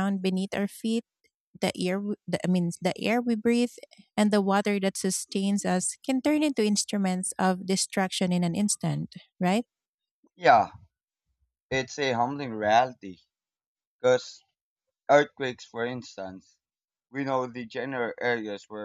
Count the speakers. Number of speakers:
2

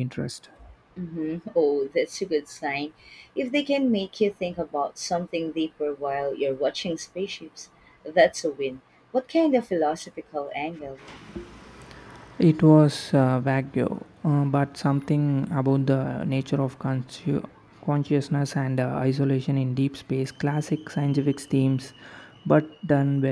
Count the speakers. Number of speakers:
2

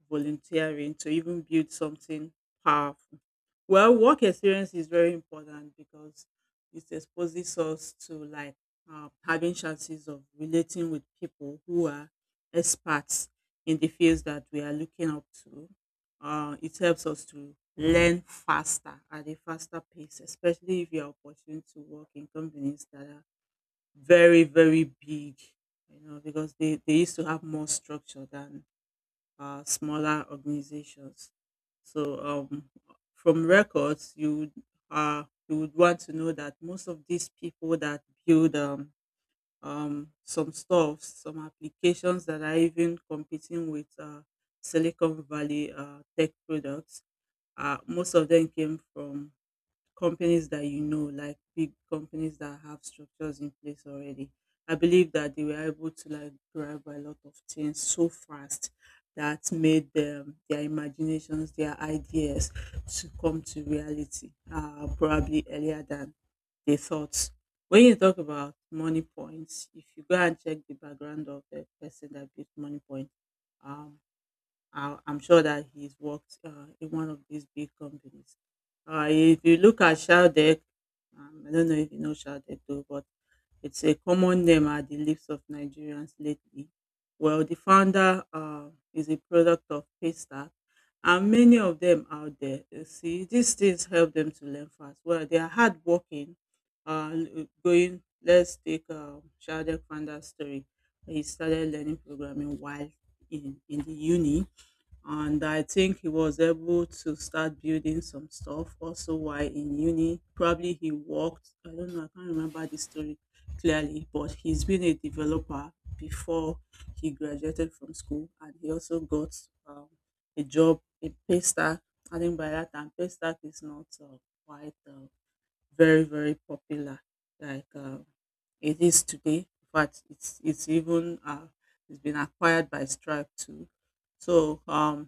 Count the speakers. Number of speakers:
1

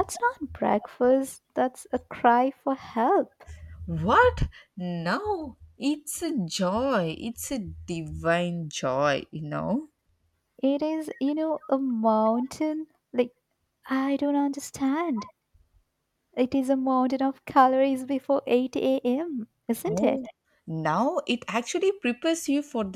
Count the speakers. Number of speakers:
2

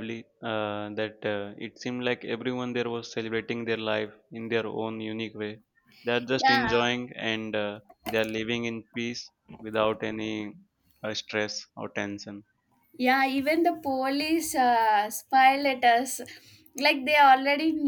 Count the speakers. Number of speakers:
2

